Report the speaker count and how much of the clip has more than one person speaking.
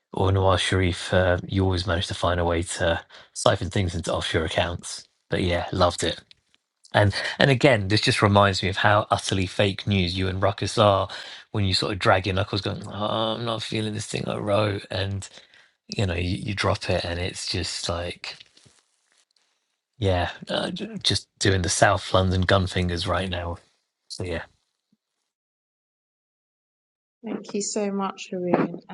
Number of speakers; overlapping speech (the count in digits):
2, no overlap